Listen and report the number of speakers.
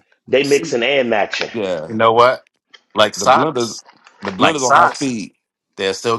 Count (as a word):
three